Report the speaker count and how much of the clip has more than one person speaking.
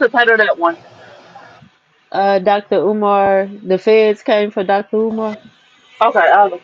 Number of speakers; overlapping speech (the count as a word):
two, no overlap